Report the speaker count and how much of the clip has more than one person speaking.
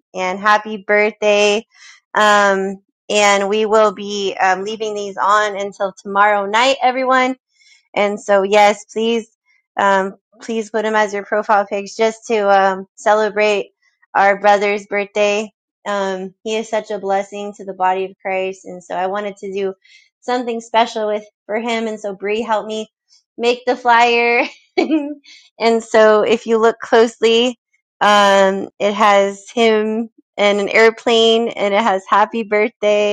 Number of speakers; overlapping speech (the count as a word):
one, no overlap